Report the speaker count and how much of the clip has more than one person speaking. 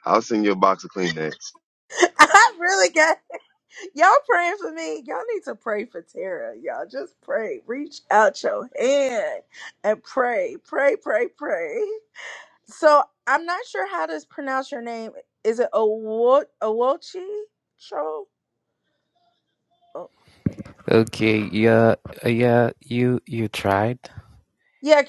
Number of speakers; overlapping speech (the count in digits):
3, no overlap